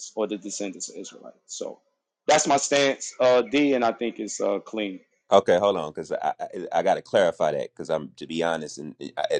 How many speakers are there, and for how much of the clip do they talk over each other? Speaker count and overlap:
two, no overlap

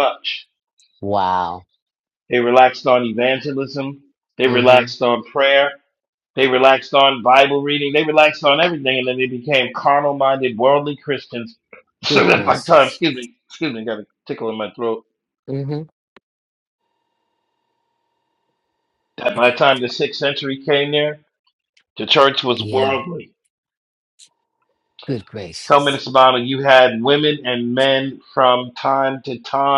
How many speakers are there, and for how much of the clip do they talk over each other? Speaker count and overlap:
two, about 6%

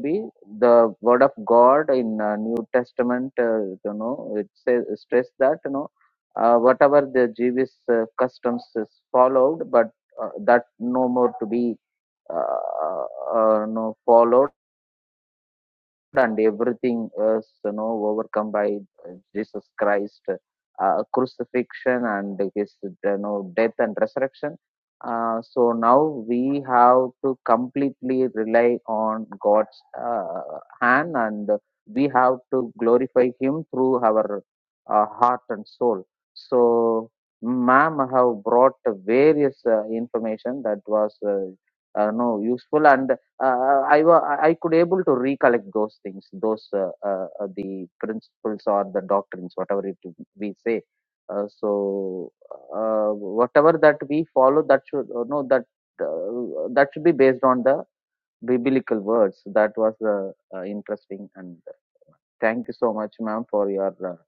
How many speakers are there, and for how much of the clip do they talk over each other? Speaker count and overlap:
one, no overlap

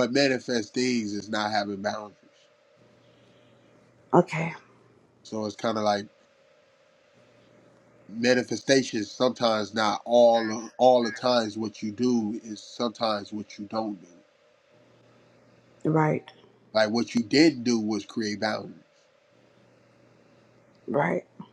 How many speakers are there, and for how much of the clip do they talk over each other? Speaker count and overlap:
two, no overlap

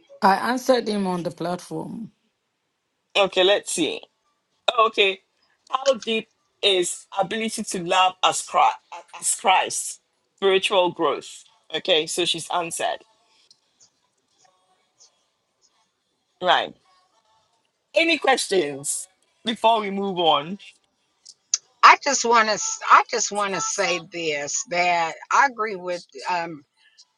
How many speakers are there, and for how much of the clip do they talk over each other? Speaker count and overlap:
three, no overlap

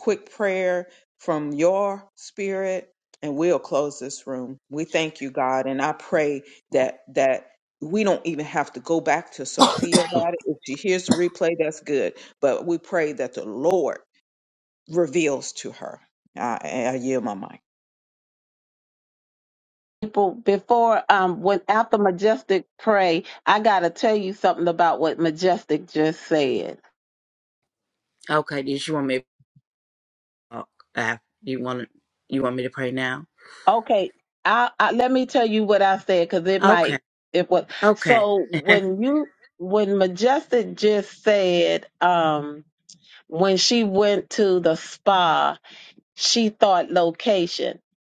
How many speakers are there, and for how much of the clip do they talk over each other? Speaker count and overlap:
three, about 2%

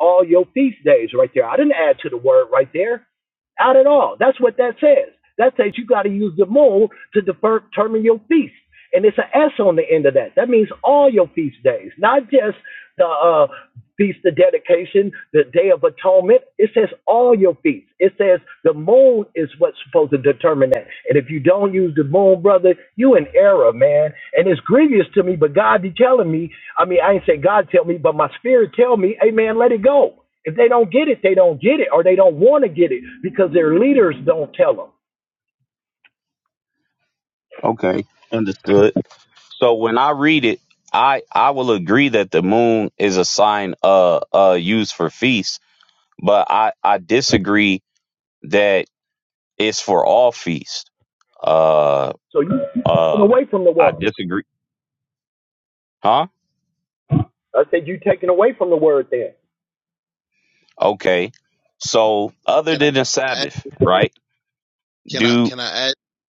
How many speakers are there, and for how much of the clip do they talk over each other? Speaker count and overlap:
three, about 3%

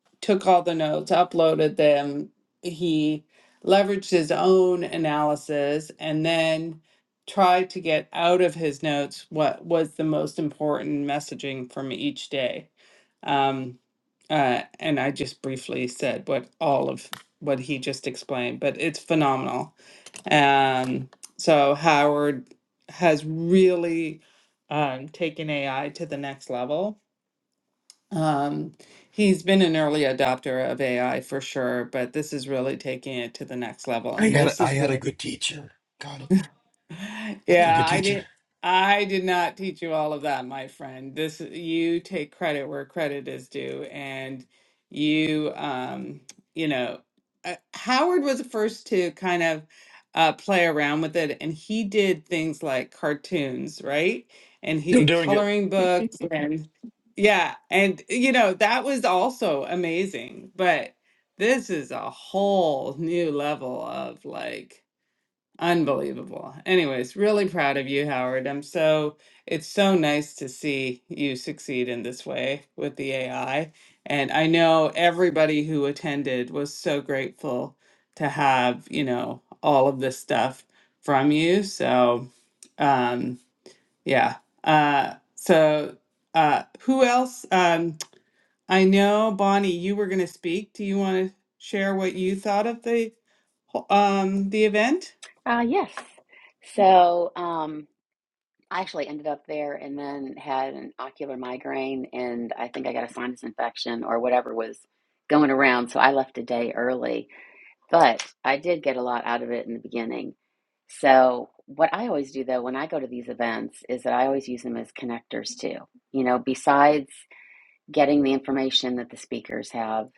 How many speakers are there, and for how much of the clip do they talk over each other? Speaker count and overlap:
three, about 2%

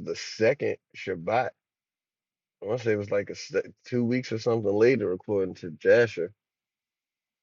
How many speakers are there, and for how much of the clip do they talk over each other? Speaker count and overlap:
one, no overlap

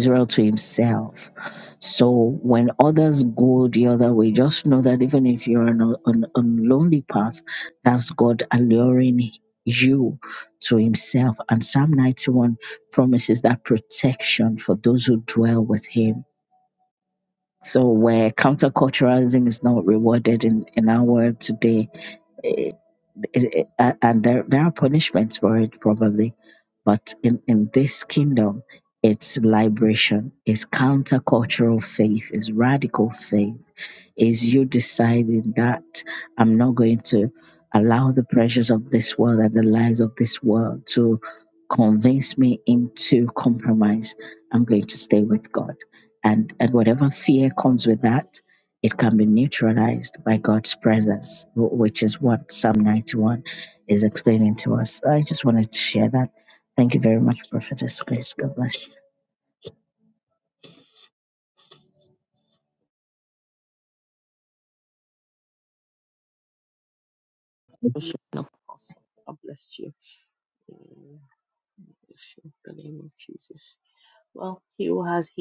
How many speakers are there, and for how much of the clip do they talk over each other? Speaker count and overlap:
two, no overlap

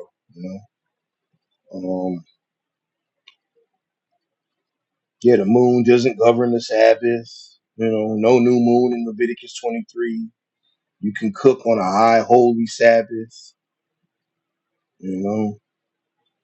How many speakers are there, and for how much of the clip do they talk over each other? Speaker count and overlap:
one, no overlap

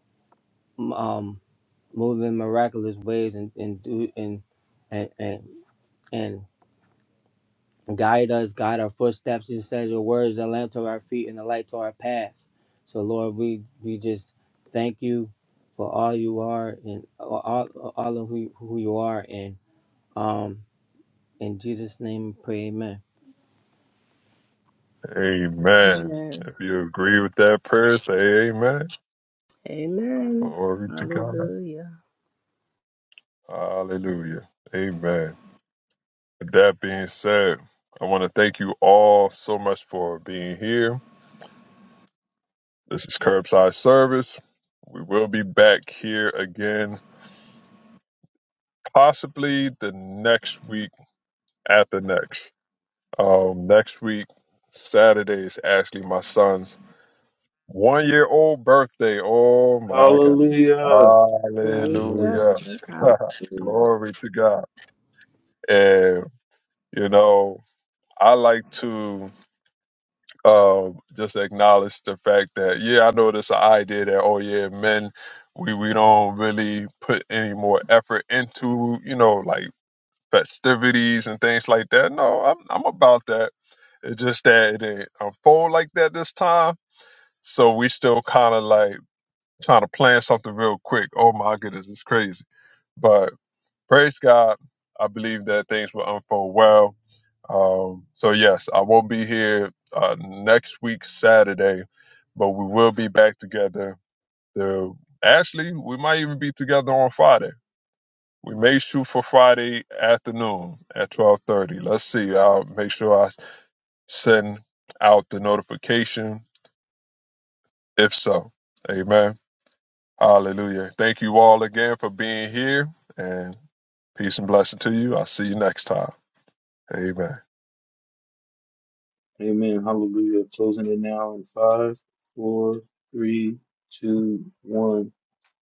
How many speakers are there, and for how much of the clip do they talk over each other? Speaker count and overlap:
four, about 2%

